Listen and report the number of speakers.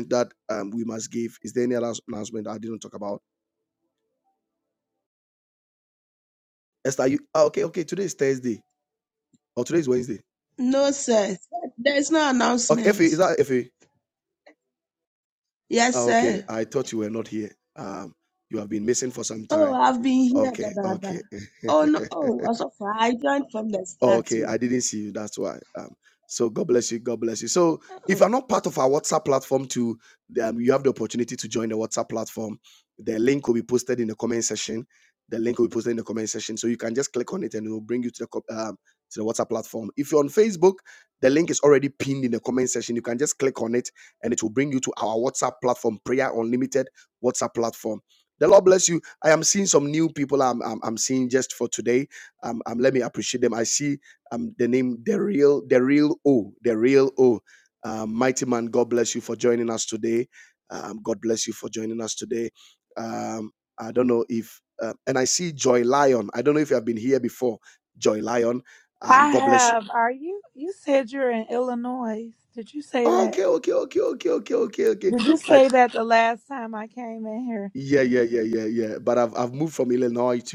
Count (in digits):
3